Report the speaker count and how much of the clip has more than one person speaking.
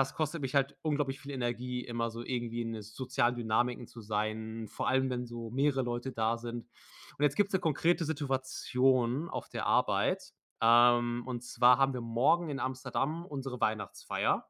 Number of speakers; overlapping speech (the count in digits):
1, no overlap